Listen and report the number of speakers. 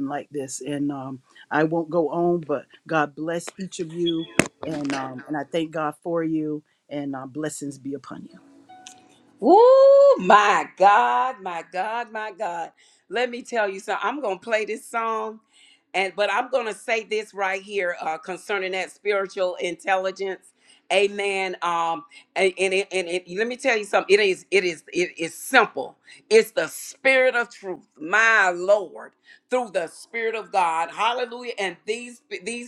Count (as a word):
two